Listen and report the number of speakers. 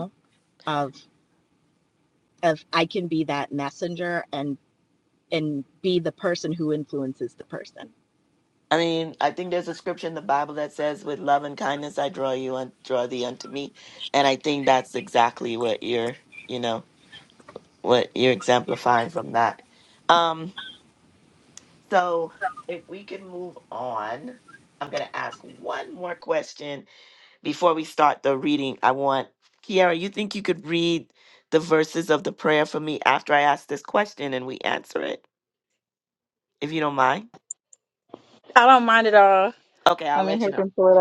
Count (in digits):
3